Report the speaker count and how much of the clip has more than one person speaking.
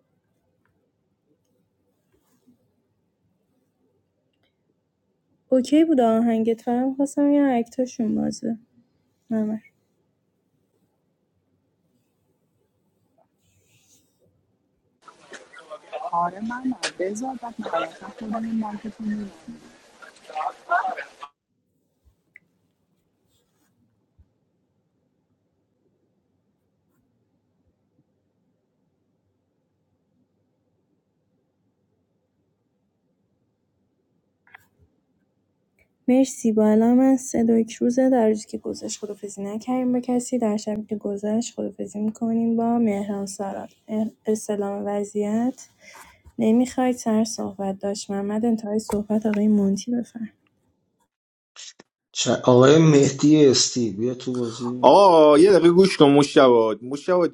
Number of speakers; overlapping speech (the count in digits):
4, under 1%